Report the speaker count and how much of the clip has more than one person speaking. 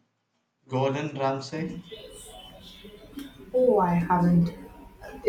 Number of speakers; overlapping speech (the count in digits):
2, no overlap